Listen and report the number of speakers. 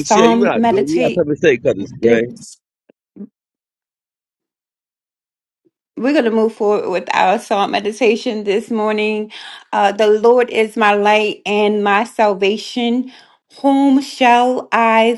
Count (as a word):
two